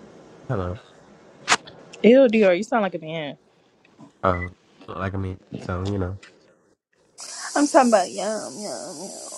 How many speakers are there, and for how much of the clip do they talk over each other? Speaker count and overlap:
3, no overlap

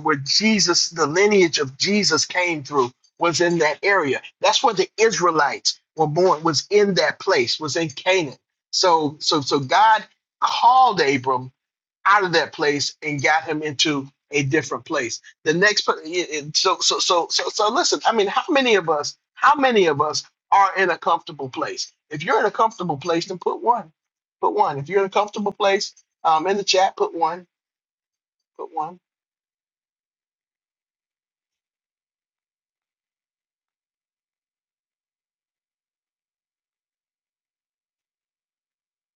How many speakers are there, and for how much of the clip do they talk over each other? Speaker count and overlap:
1, no overlap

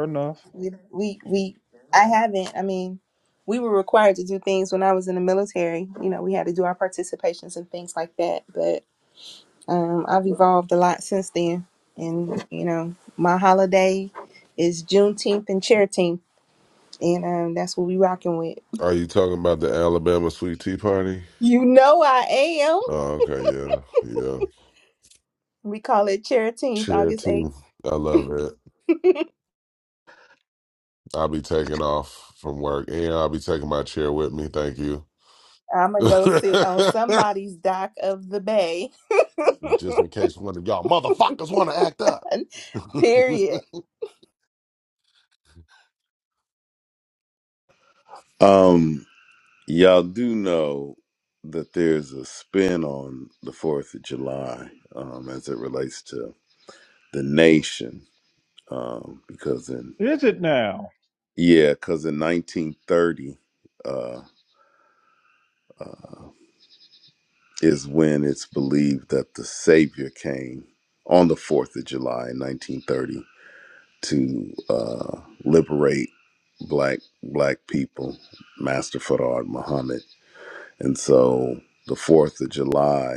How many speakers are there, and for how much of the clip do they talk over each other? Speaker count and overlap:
4, about 1%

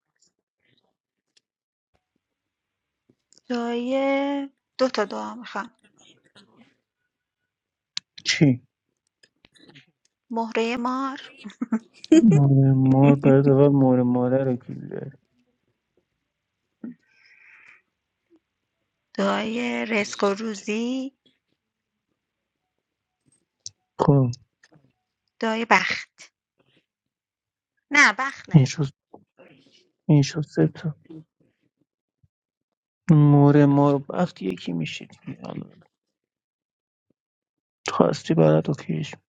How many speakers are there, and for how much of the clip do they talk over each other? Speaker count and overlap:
2, about 1%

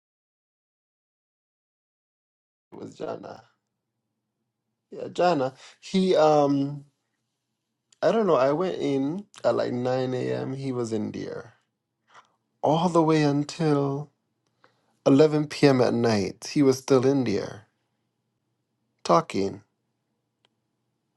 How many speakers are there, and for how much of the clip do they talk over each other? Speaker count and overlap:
1, no overlap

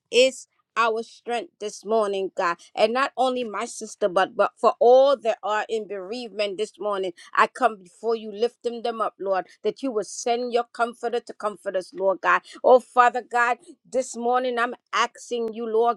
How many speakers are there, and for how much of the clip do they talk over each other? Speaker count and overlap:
1, no overlap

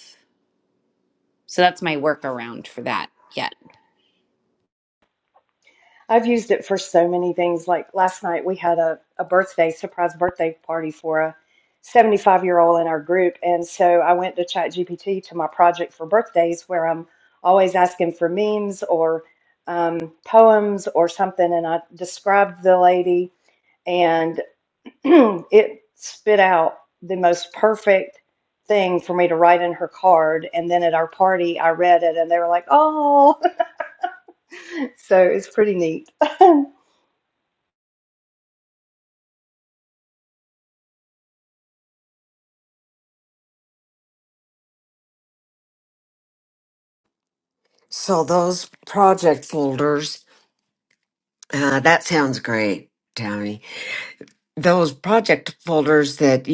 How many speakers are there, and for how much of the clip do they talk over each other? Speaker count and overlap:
3, no overlap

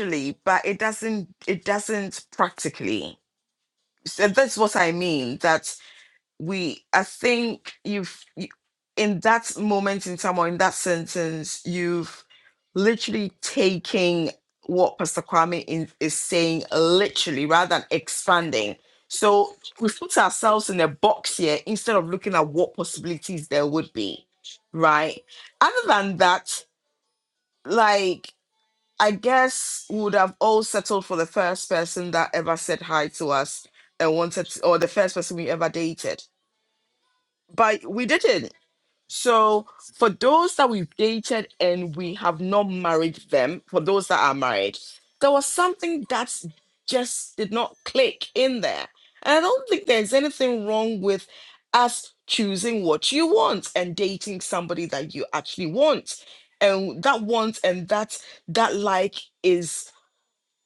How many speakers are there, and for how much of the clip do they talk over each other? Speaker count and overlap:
1, no overlap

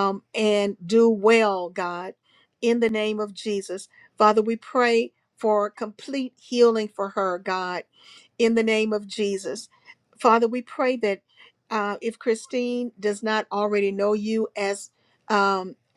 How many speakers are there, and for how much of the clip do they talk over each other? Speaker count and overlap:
1, no overlap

